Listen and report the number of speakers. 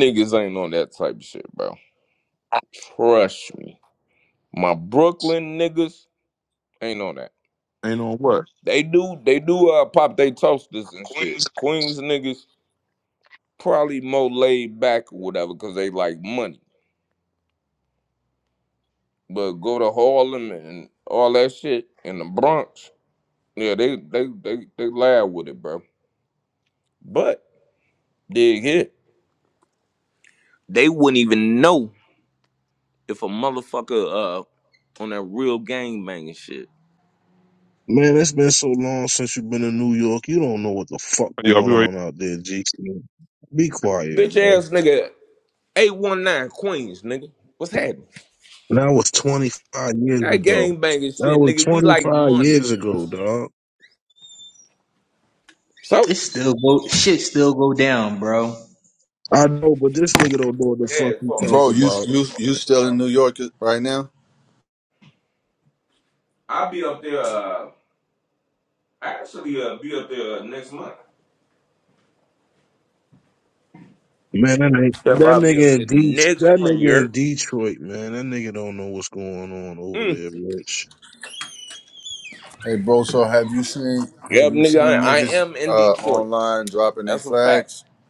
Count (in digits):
5